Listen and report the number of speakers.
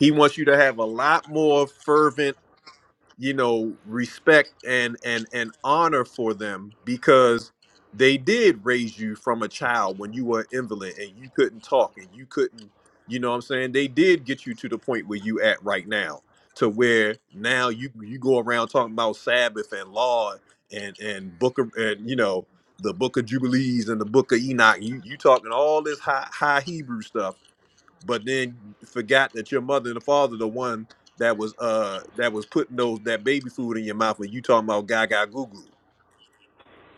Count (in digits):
1